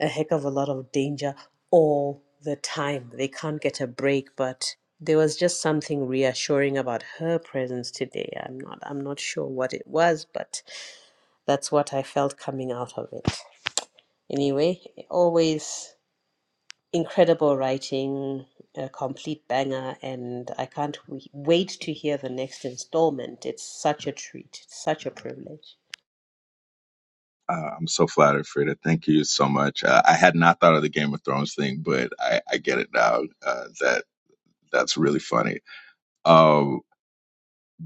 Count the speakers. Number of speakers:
2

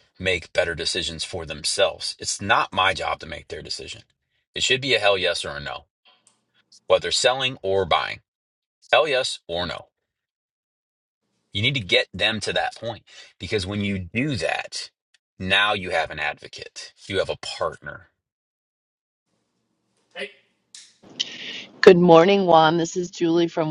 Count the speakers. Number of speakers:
2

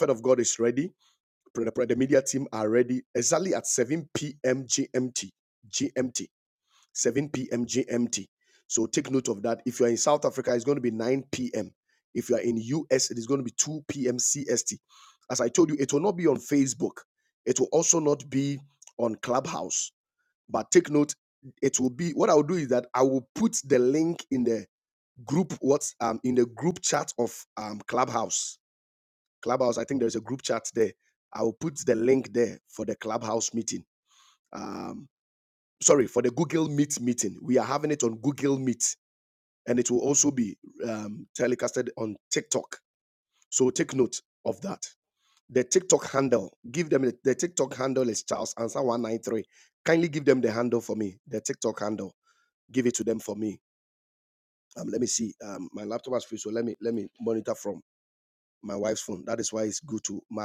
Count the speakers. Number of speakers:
1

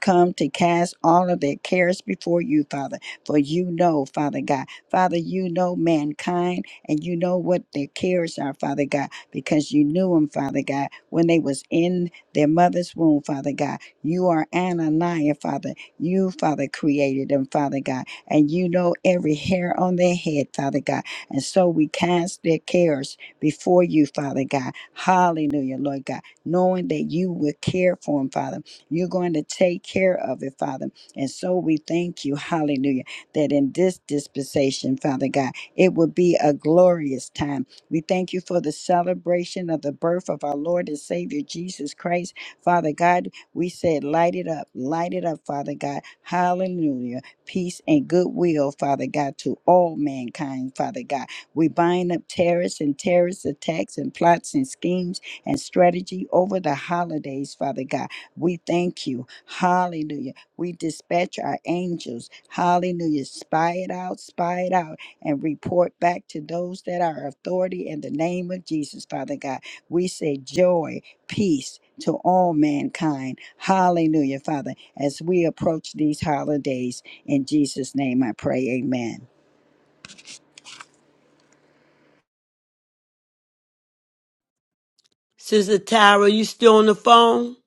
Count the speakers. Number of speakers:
2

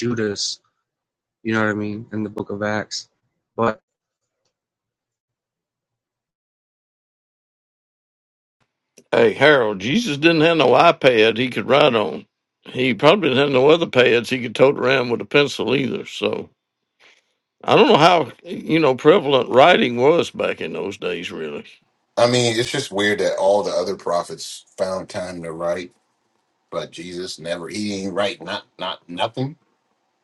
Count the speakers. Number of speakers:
3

